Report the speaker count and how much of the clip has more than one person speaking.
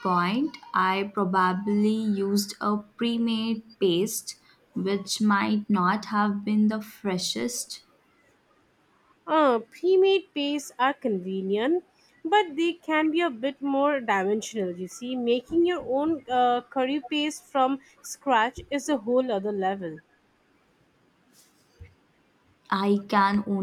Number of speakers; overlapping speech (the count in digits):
2, no overlap